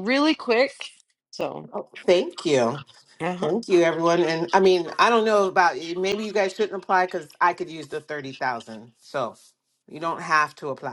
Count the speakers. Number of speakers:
2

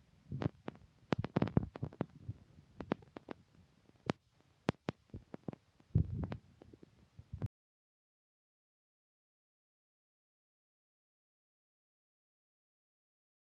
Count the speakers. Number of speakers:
0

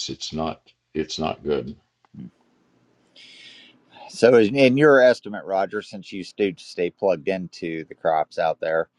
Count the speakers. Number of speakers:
2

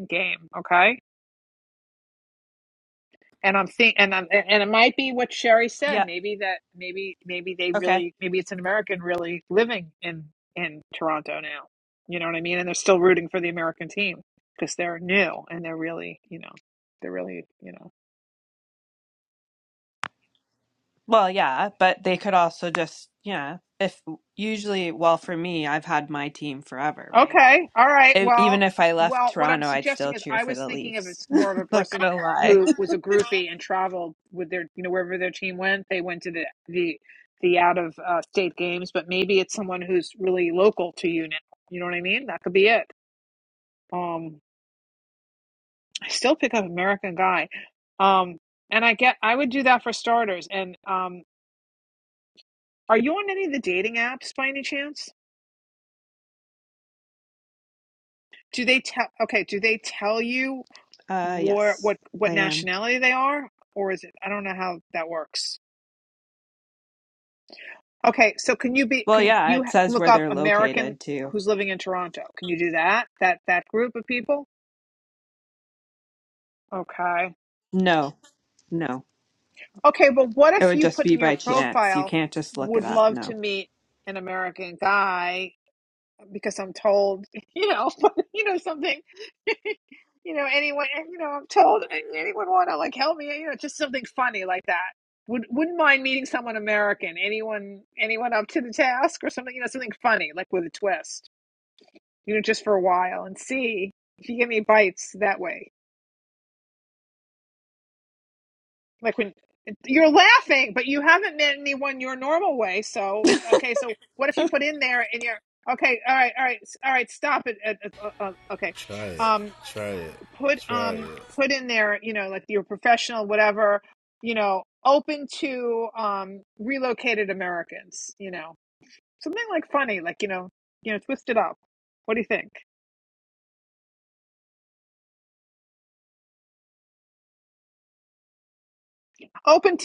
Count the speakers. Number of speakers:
3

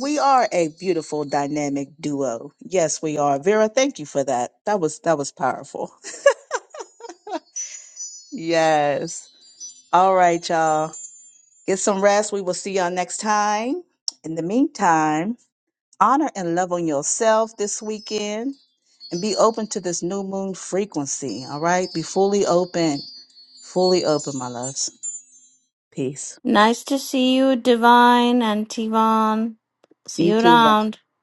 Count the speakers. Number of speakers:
2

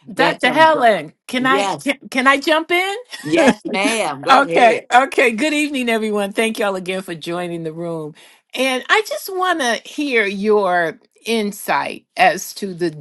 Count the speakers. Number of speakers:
2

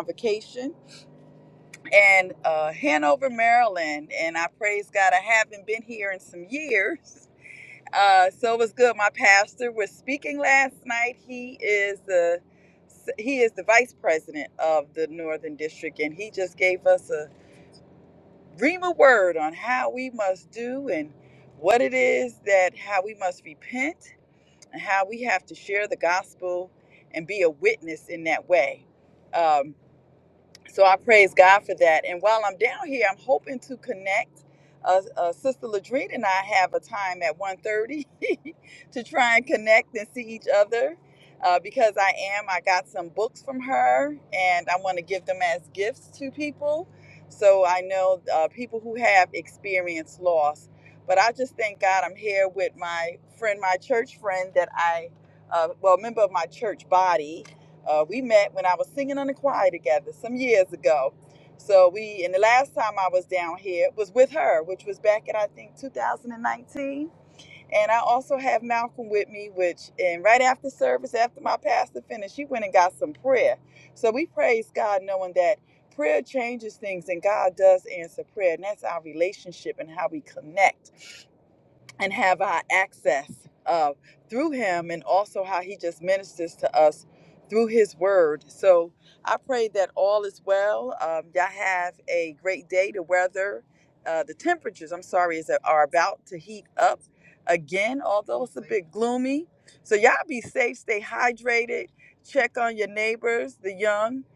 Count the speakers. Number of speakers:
1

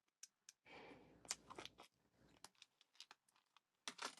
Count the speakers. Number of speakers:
0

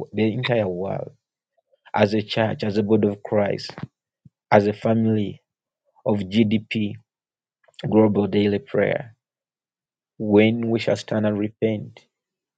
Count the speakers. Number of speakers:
1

